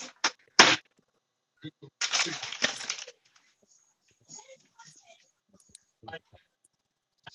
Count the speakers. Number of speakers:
0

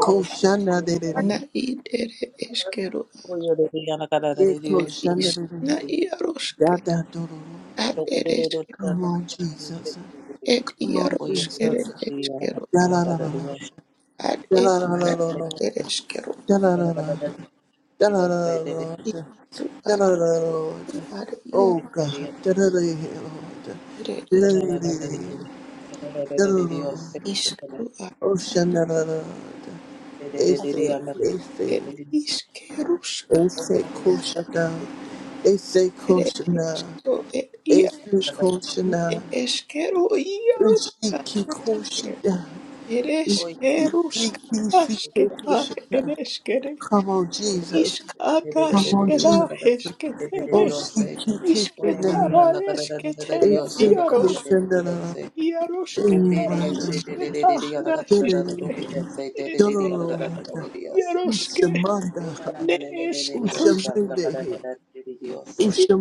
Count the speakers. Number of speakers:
3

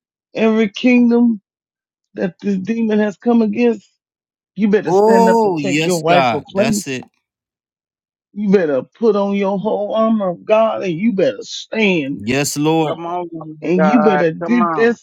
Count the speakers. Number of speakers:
3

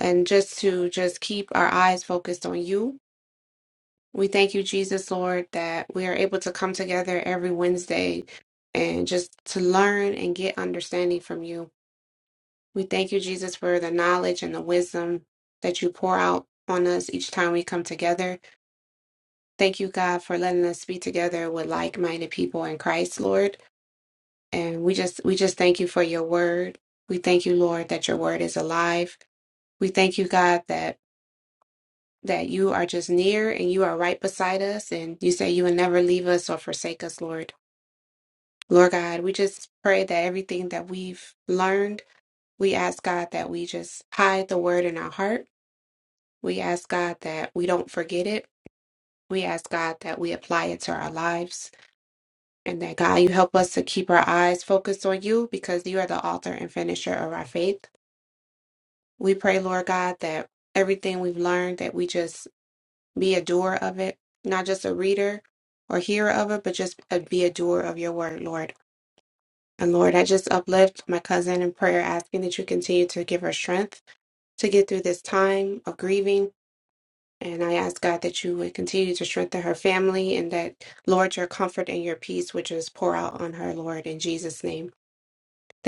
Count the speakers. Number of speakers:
1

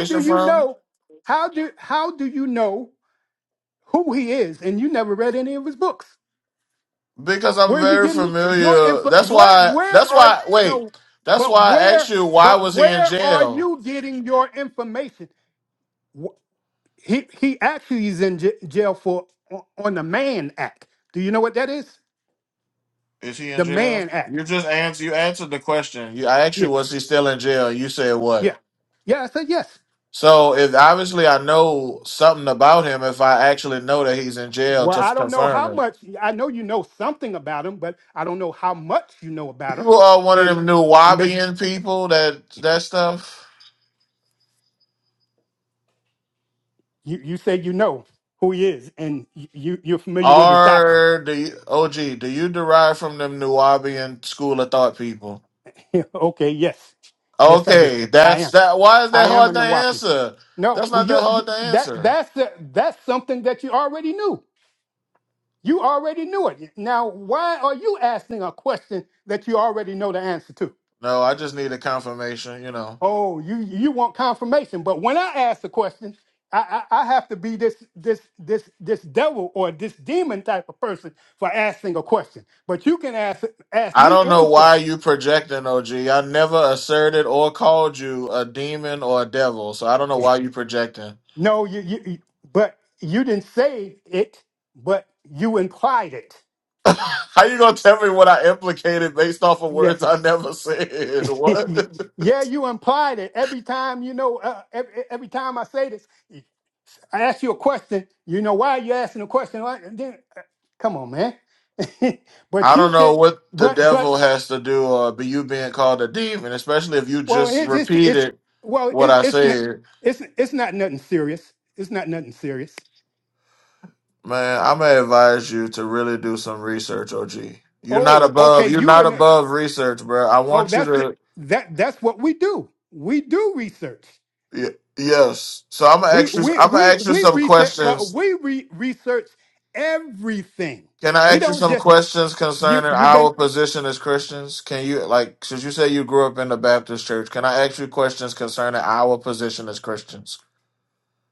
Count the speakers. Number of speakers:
2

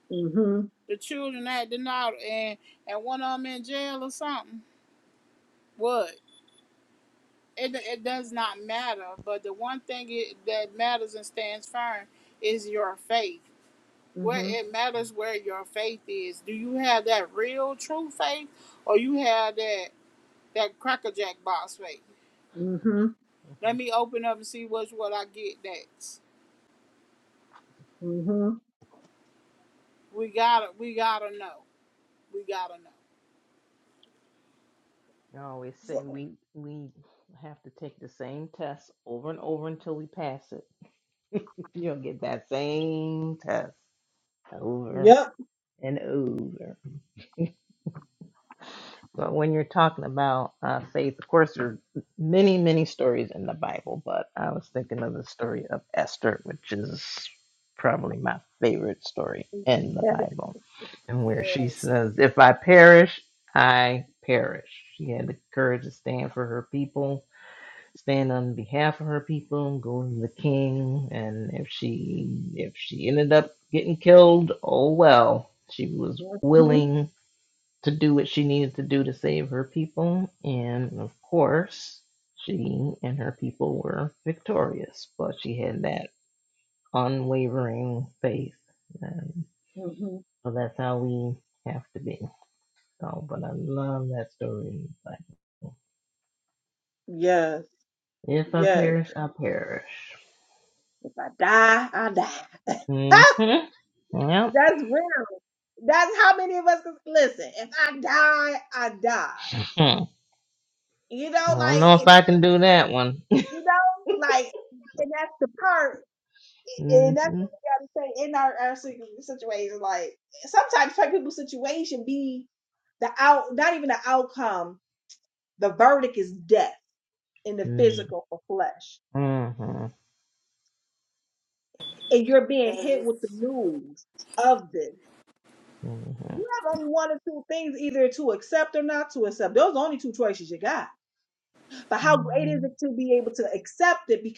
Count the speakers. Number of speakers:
3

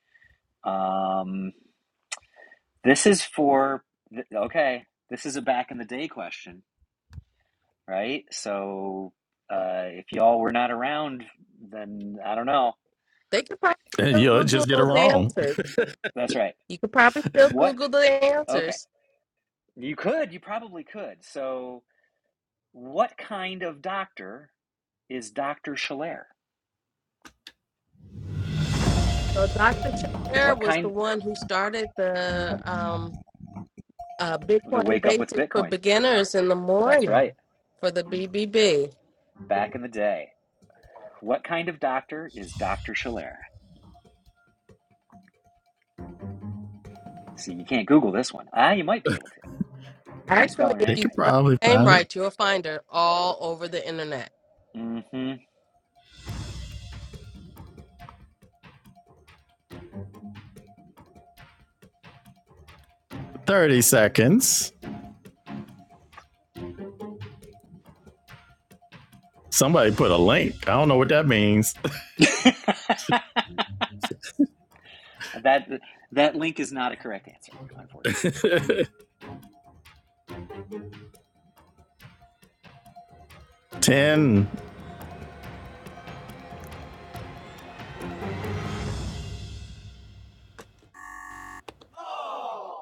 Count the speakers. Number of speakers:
3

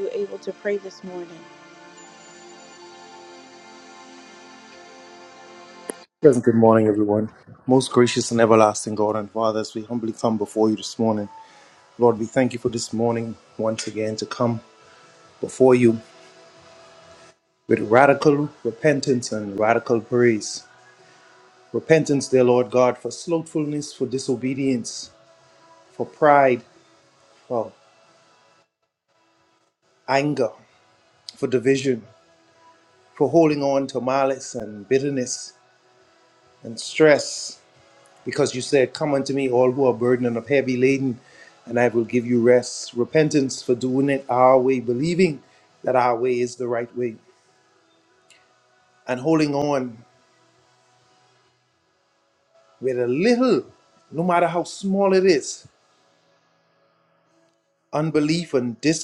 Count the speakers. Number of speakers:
2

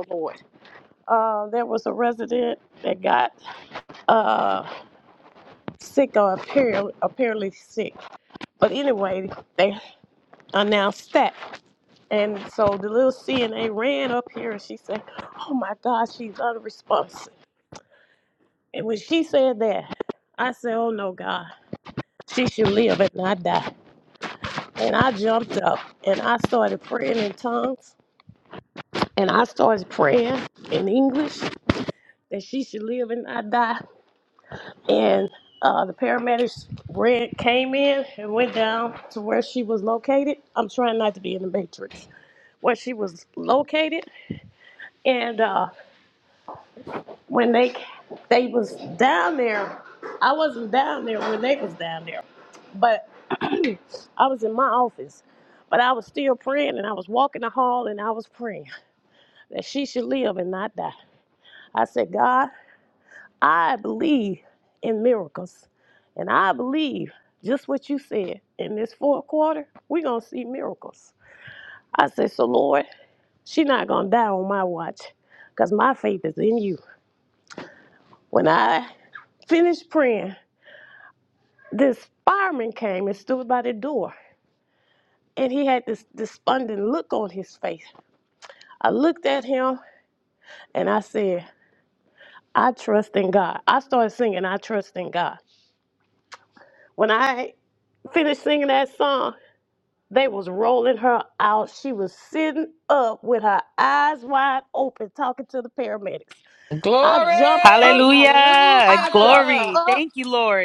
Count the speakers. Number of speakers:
3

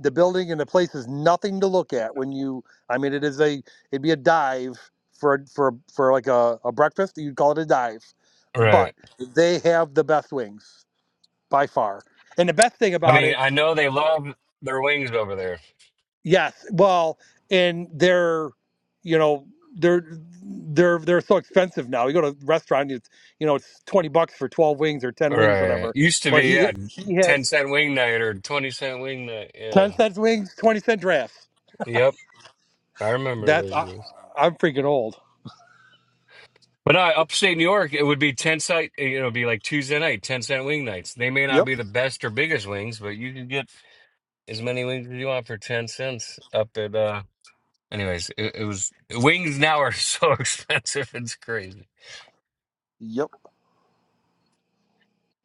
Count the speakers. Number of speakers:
2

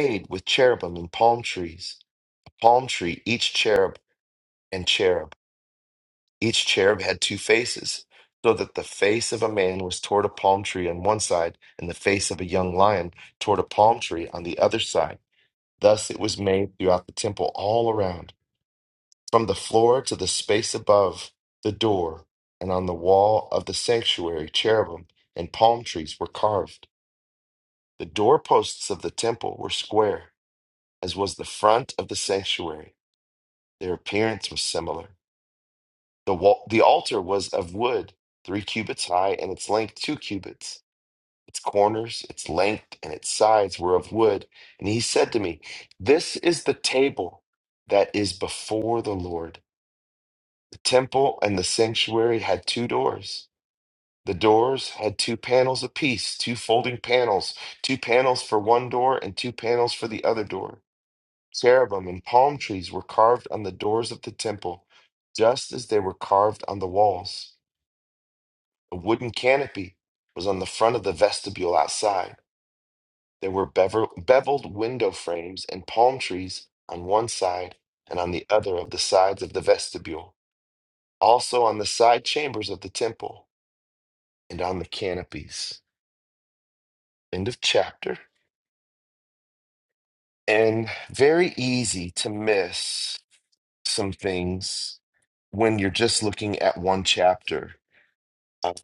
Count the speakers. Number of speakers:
1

